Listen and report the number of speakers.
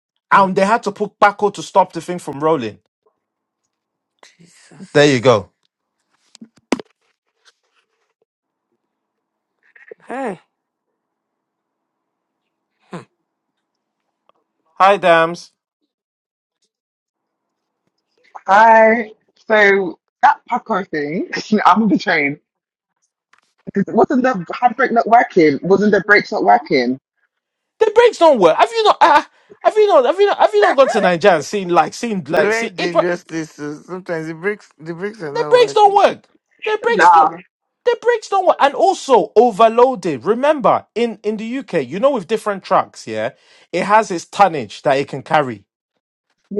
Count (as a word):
three